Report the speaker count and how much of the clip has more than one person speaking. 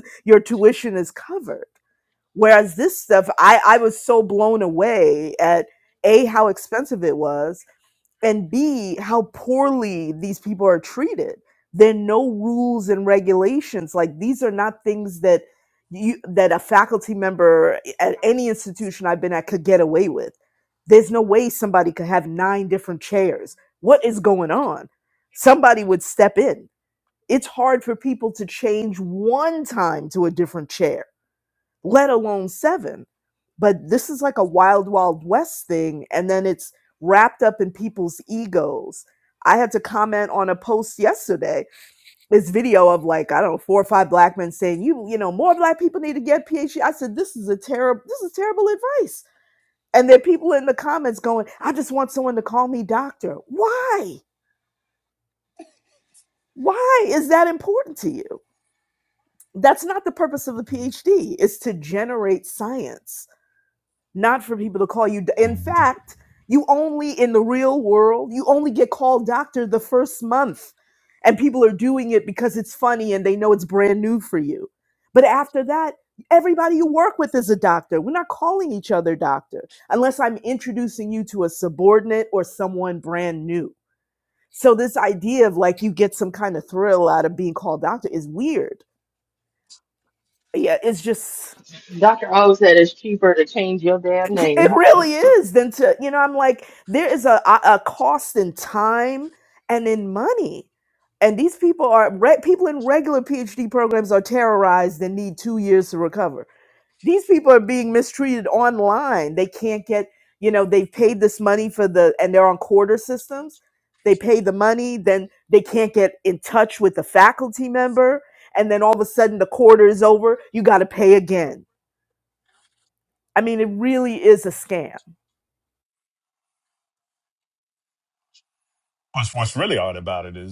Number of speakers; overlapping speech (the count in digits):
3, under 1%